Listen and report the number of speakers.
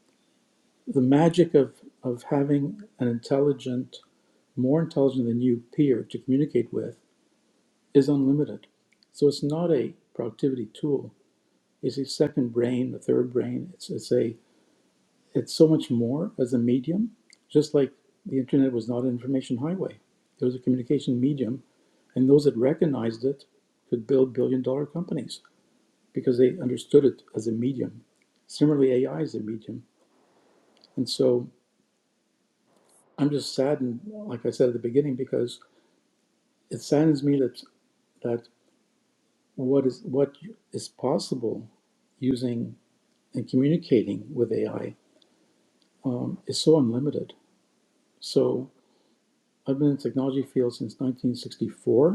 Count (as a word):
one